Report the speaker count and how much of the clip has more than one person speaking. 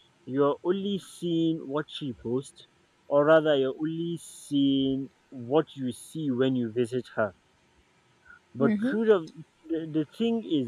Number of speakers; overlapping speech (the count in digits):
1, no overlap